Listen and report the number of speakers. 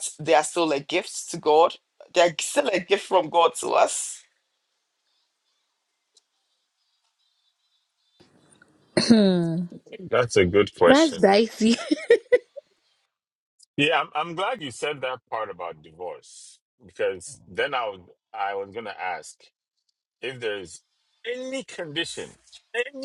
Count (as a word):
three